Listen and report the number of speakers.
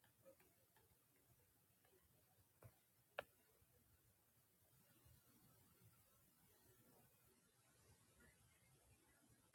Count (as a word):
zero